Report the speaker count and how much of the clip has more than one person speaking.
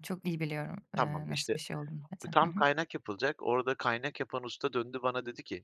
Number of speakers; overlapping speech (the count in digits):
2, about 17%